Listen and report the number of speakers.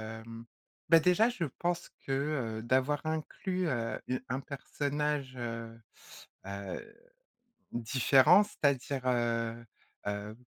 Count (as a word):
one